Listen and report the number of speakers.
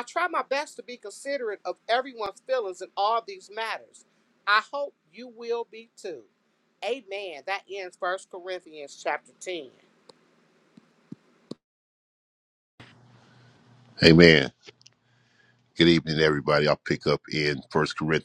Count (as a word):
two